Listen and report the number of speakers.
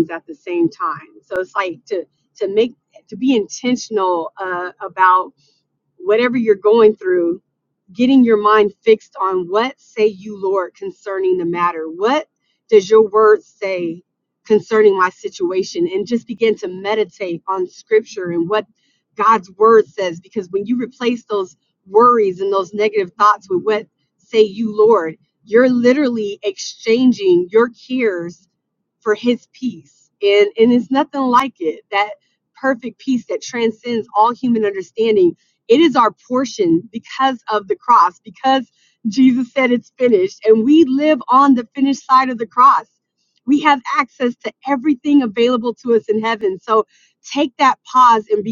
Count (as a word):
one